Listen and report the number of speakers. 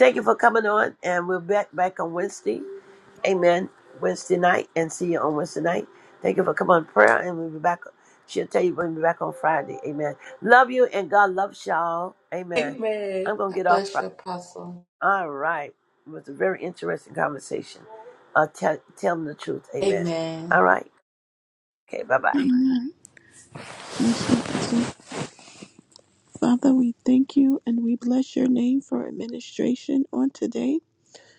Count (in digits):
3